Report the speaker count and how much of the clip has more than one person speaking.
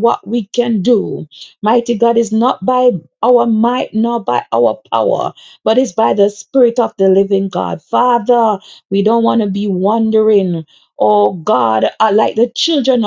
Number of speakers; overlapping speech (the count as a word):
one, no overlap